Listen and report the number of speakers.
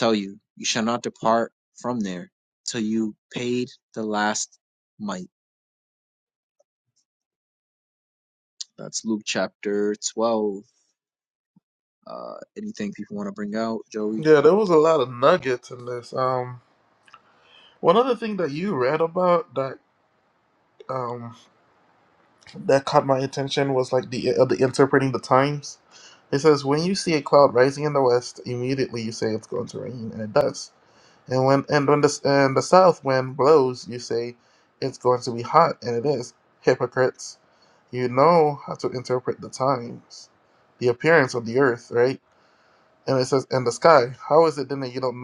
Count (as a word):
two